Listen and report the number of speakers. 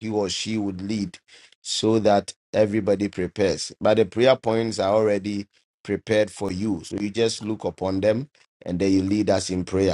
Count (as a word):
one